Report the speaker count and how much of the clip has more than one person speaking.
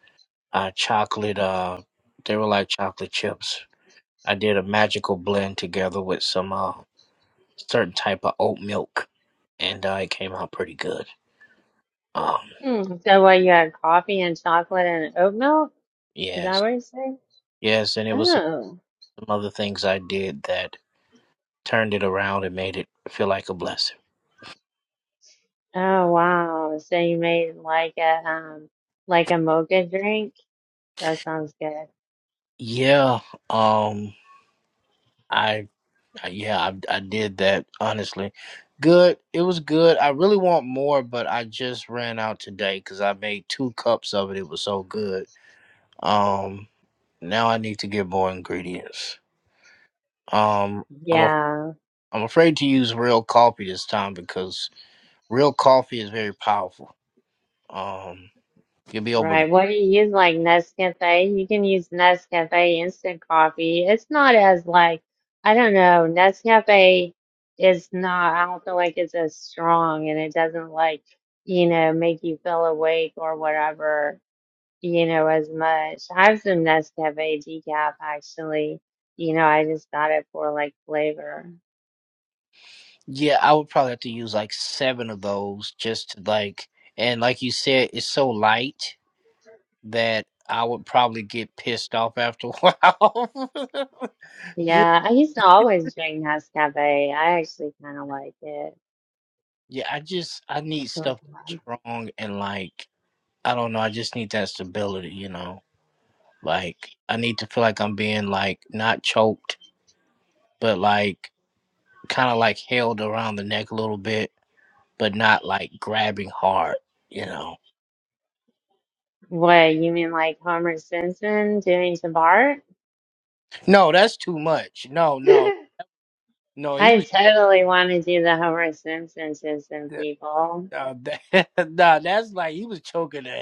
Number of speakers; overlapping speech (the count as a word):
two, about 1%